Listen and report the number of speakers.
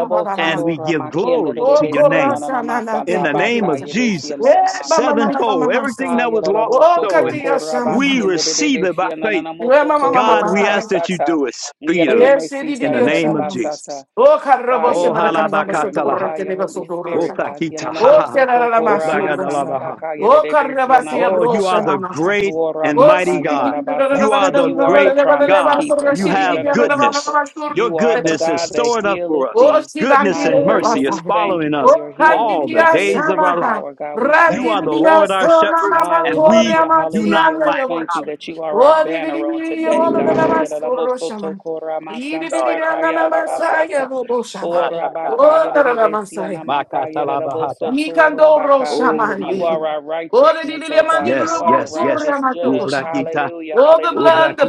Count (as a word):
three